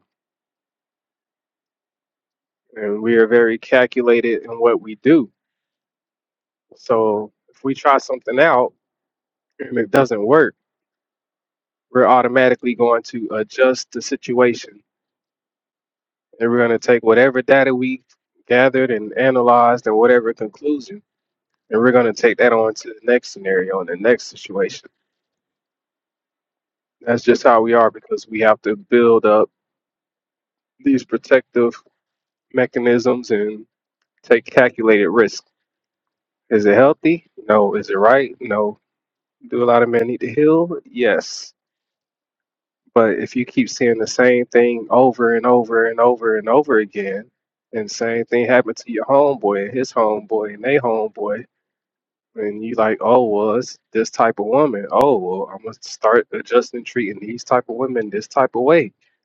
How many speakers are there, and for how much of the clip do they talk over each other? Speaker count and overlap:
1, no overlap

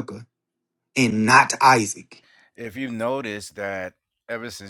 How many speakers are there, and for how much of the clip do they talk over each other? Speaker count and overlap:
2, no overlap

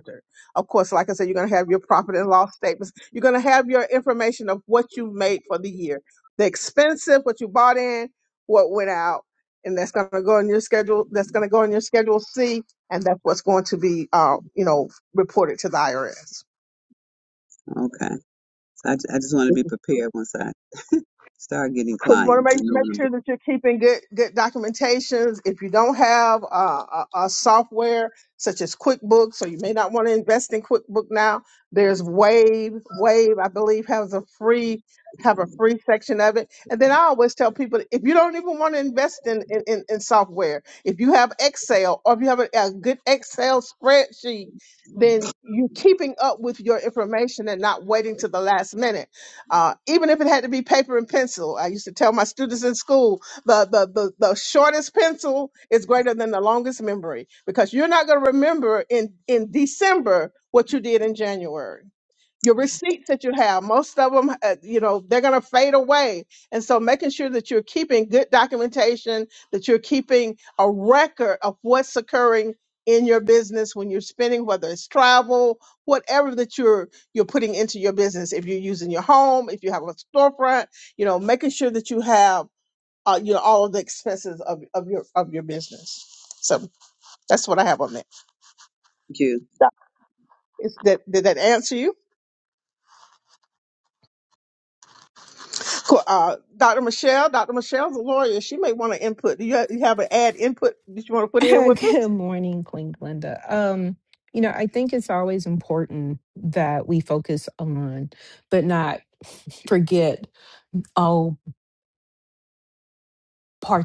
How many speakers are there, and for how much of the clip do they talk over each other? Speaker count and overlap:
3, about 1%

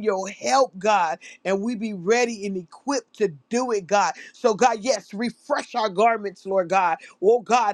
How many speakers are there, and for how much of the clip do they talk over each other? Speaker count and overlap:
1, no overlap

